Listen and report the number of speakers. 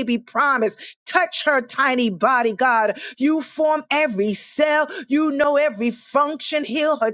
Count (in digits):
1